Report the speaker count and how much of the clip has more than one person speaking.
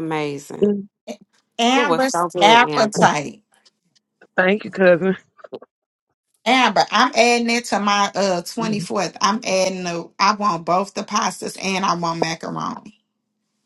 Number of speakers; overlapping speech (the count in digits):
3, about 11%